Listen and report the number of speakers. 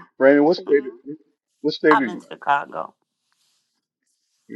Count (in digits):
2